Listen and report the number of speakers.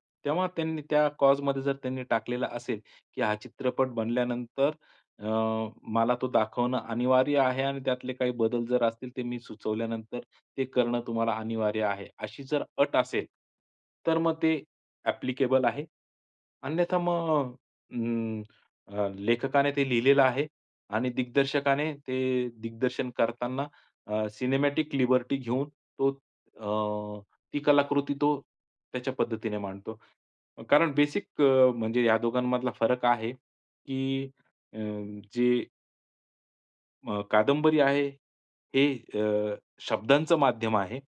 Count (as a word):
one